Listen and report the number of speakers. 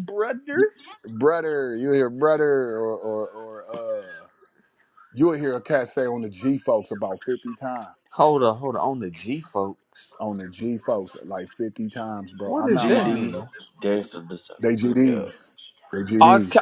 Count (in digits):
3